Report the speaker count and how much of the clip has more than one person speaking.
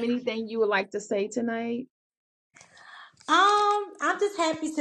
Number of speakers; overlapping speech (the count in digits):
2, no overlap